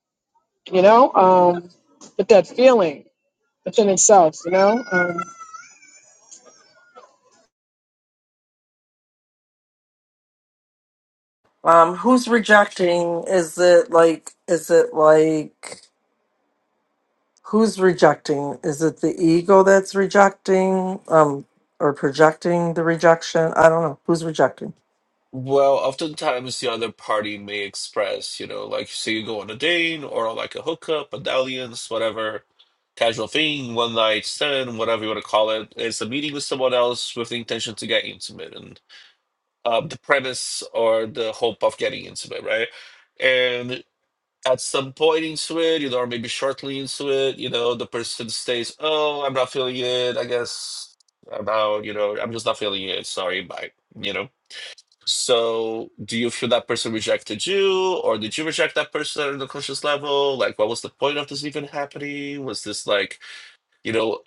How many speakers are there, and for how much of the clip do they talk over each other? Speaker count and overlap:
3, no overlap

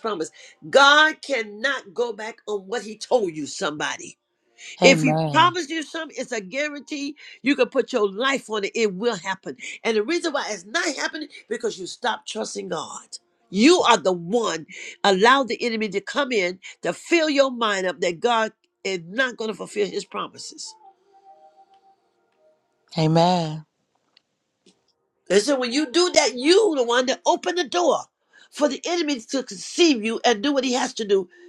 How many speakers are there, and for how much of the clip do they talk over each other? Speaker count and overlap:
2, about 2%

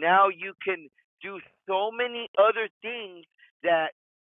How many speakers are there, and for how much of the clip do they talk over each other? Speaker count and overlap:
1, no overlap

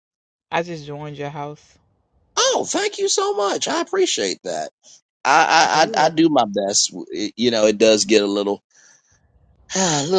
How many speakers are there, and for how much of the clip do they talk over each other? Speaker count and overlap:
2, about 3%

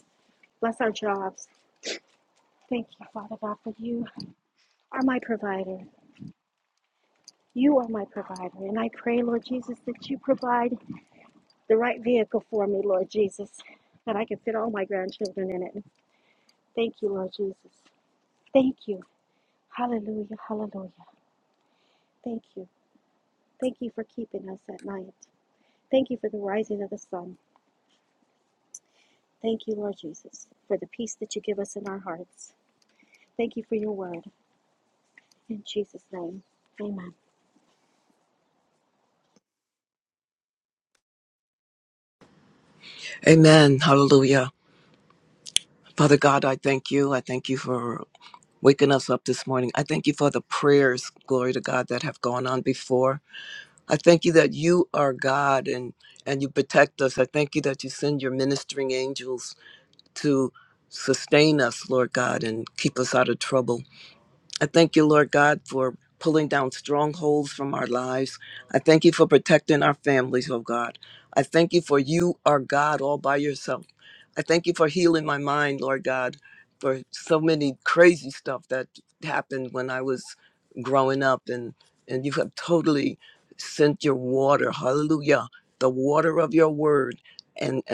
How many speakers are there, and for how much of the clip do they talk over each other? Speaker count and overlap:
2, no overlap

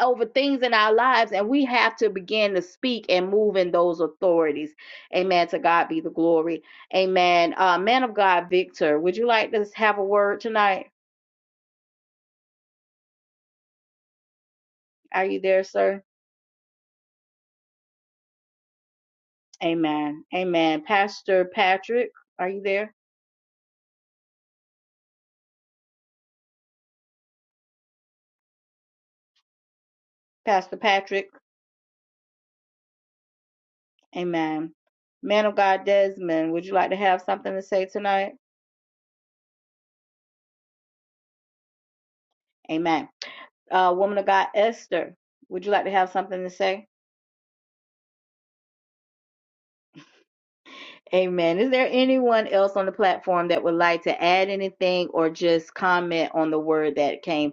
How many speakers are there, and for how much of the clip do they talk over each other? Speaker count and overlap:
1, no overlap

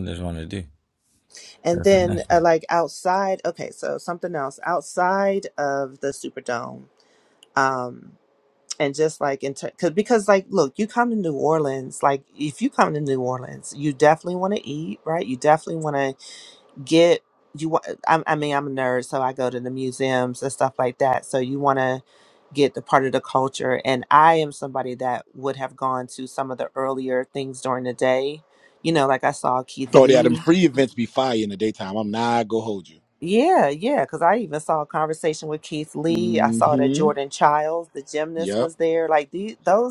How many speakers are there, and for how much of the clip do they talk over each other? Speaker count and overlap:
3, about 6%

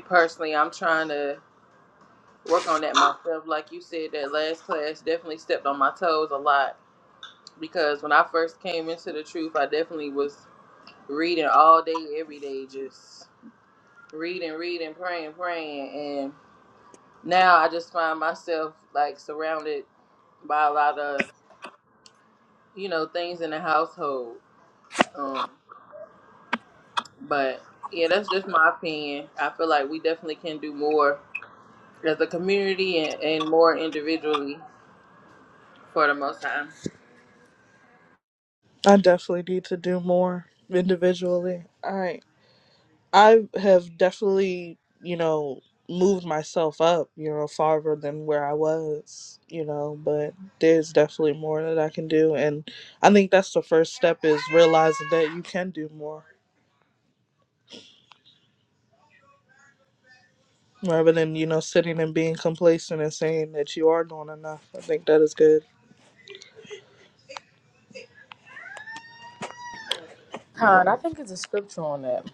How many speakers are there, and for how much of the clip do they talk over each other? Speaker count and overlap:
3, no overlap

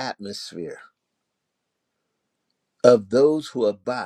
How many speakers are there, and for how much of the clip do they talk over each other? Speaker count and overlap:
1, no overlap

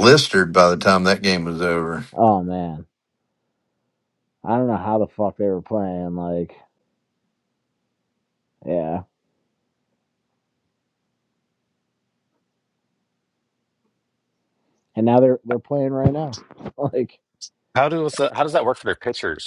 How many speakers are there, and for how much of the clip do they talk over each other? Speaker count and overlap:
3, no overlap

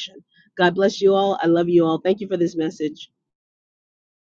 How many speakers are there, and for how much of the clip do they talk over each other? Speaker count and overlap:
1, no overlap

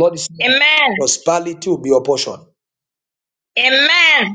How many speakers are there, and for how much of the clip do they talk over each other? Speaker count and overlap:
2, under 1%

